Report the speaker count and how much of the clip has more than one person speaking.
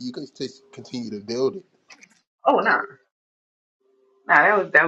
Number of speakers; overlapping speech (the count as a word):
two, no overlap